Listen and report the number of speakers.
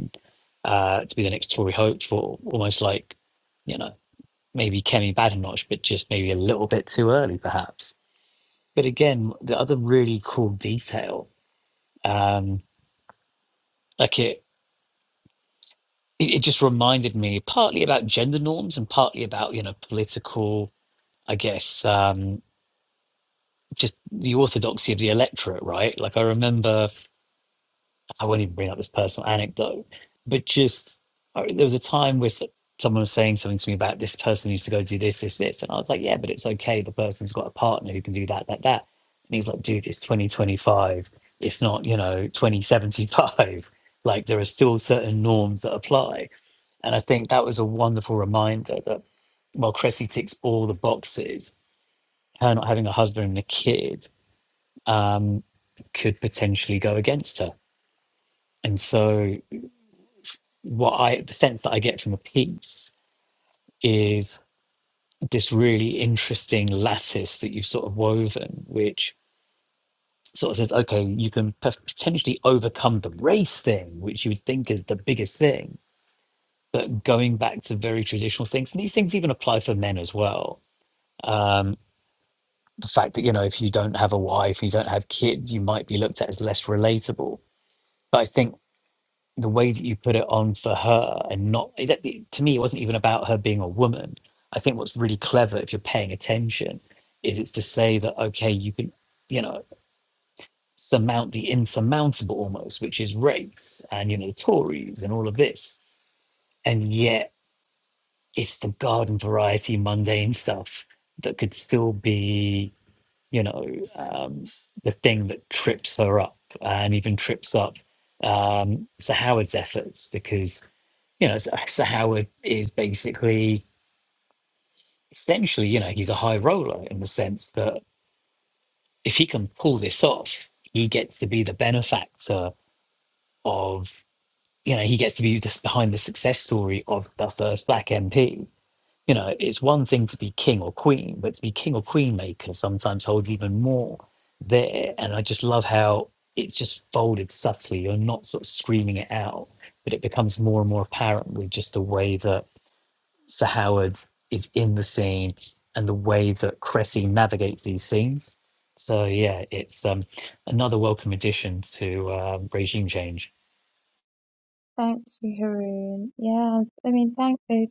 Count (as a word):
two